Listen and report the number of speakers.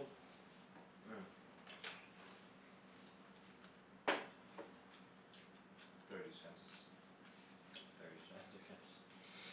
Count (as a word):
one